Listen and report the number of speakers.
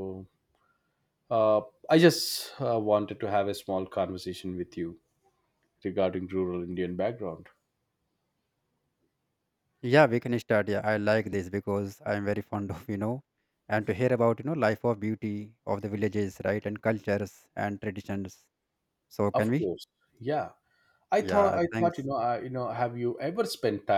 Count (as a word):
two